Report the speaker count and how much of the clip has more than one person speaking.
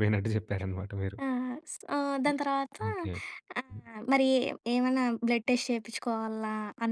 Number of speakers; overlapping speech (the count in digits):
2, about 1%